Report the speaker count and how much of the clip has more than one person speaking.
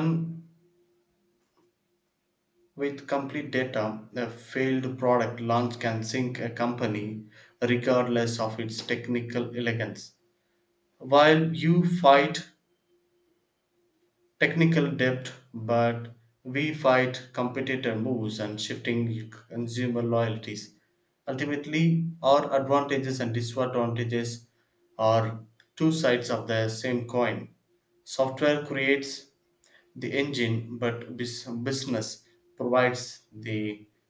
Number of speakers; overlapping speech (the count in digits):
1, no overlap